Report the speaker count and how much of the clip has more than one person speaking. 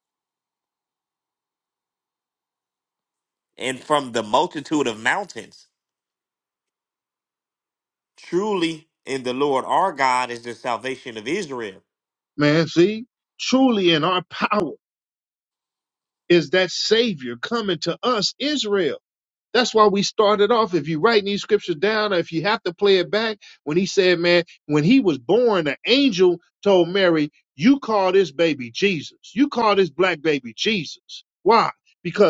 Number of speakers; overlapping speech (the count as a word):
two, no overlap